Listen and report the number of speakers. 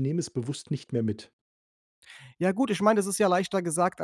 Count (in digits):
2